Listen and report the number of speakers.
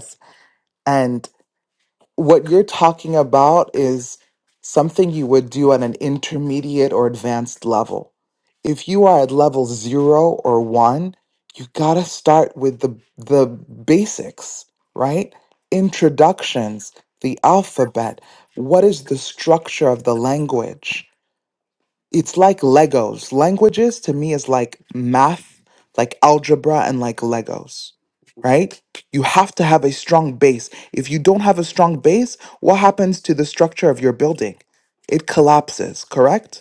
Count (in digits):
1